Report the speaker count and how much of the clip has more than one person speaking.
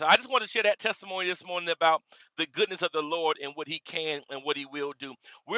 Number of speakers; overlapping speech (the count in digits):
1, no overlap